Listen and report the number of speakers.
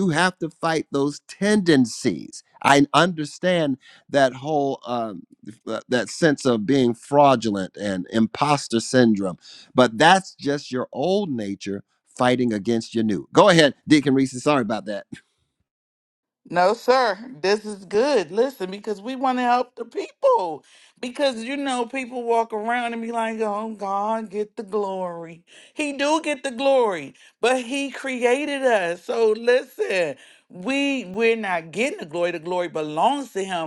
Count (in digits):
2